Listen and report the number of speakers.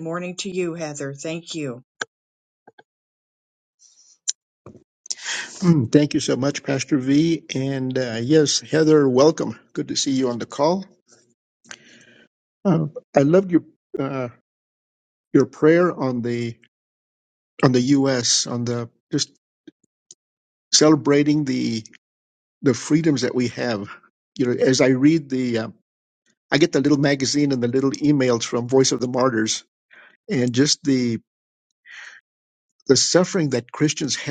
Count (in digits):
2